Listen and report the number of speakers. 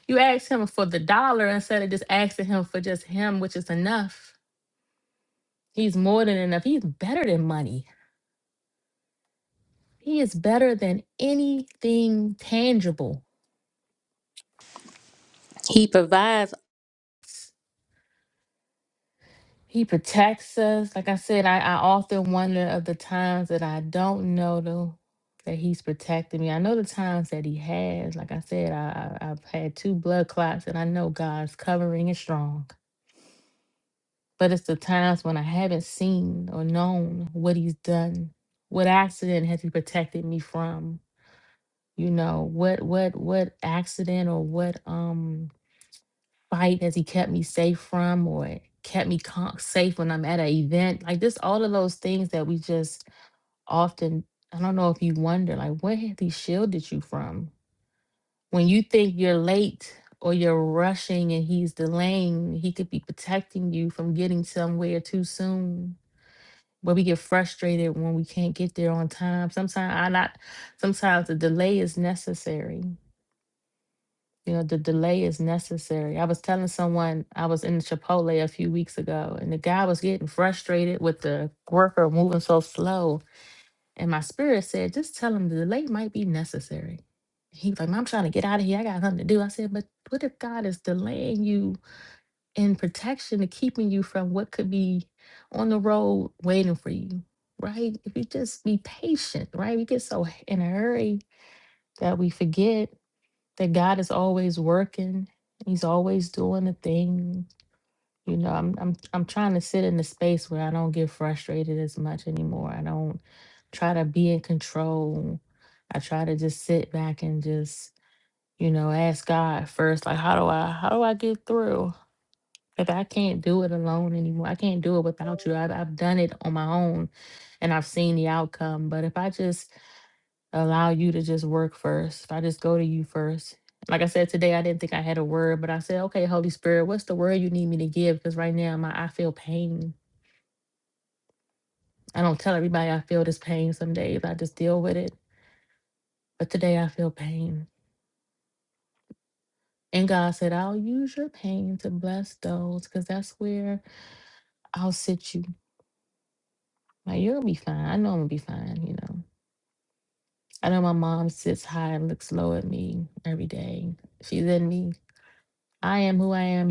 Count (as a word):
one